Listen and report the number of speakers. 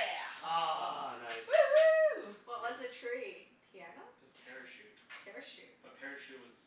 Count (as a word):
four